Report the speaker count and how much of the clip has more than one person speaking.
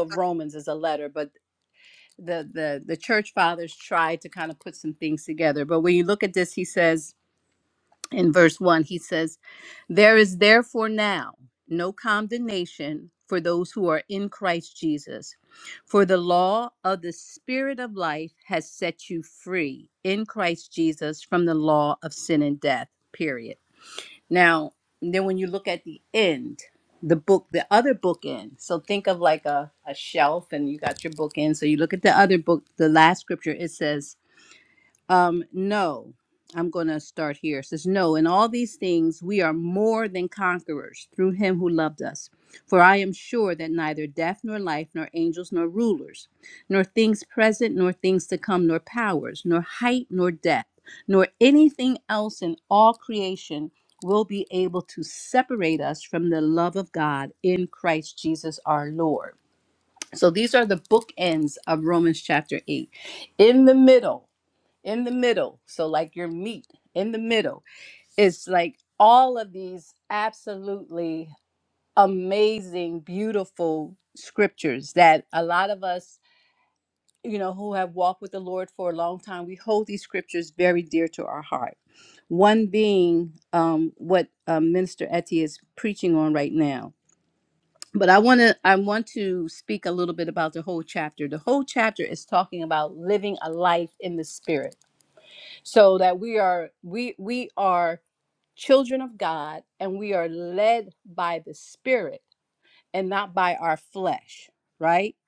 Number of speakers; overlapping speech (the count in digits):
1, no overlap